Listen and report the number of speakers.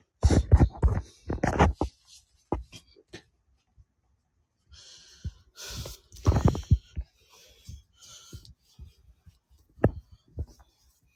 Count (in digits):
0